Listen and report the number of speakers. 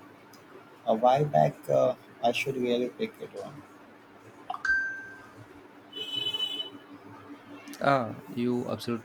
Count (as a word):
two